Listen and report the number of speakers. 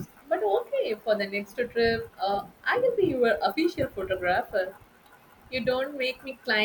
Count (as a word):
one